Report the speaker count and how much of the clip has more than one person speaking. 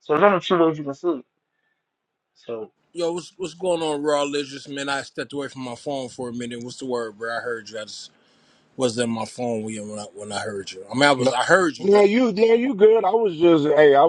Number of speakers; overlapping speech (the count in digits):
3, about 3%